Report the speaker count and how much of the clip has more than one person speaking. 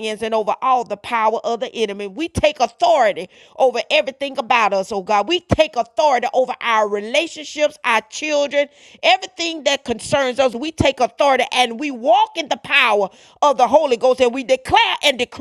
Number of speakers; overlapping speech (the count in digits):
1, no overlap